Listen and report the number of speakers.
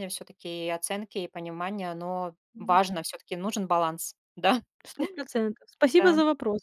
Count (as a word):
two